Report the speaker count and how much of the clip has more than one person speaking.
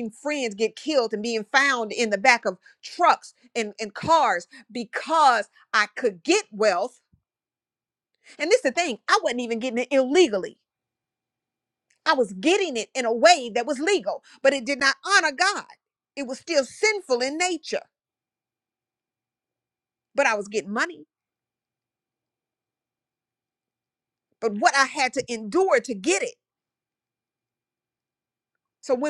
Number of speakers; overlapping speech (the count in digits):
1, no overlap